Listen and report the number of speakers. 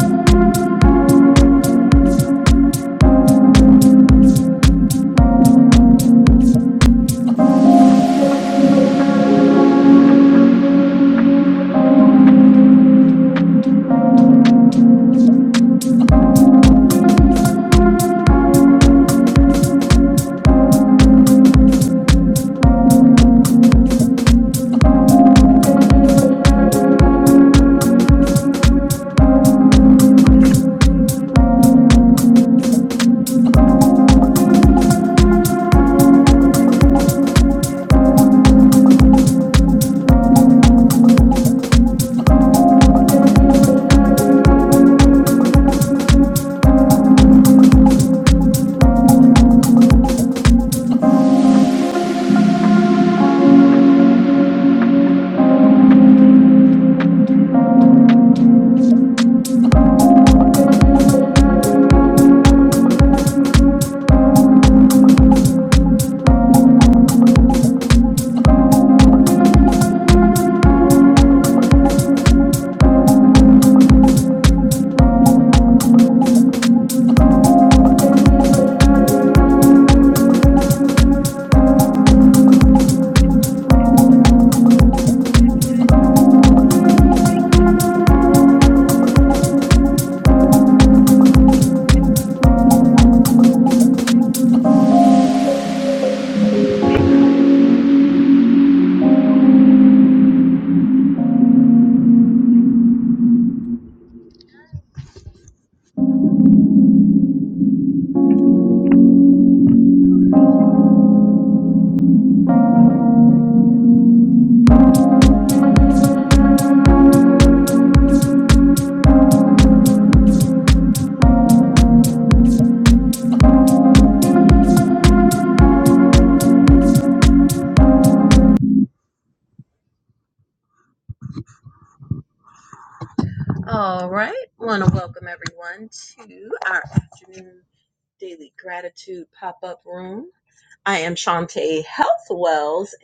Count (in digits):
1